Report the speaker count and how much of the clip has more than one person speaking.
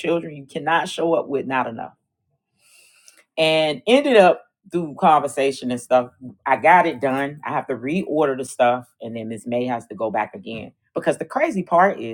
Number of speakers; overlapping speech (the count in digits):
1, no overlap